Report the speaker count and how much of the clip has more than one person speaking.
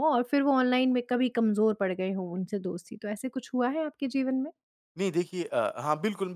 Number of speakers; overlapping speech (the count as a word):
two, no overlap